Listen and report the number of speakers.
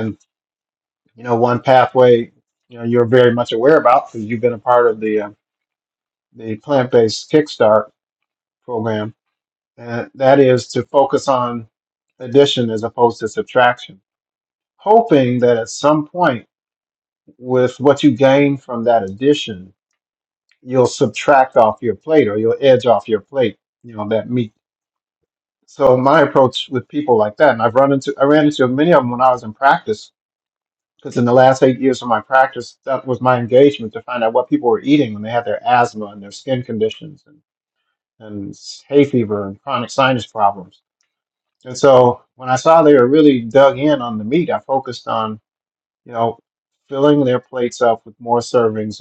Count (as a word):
one